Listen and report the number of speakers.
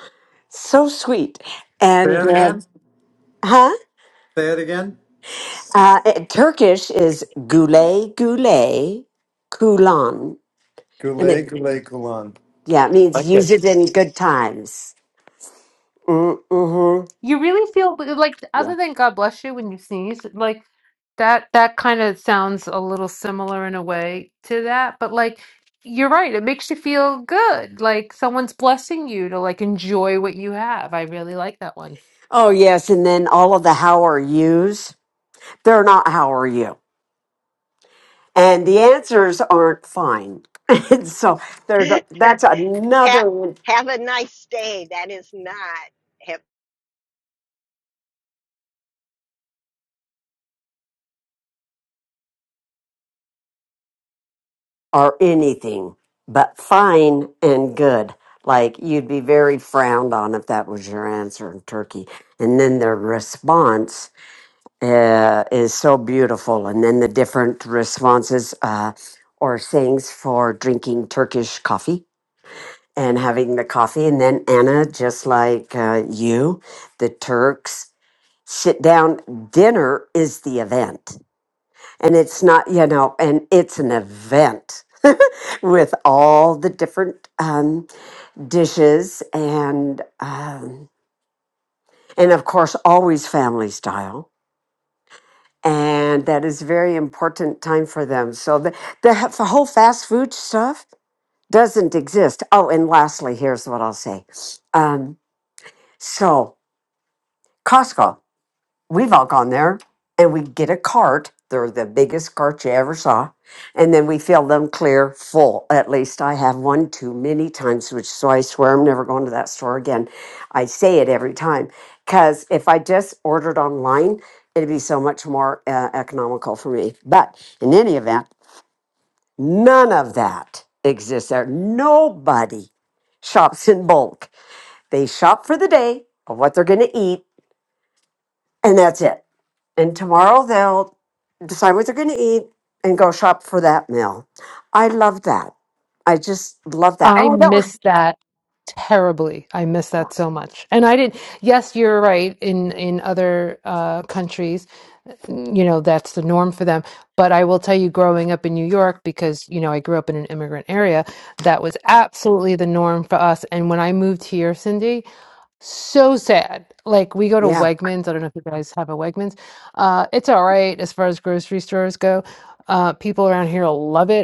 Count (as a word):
four